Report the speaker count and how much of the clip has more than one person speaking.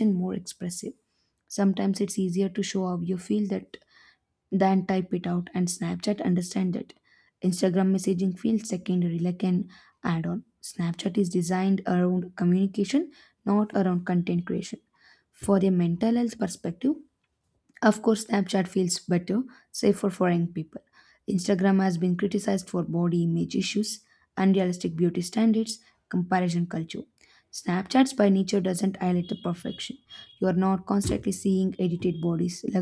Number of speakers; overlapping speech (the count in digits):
1, no overlap